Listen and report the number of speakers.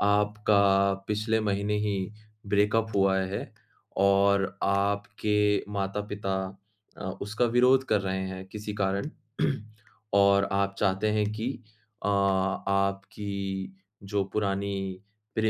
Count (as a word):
one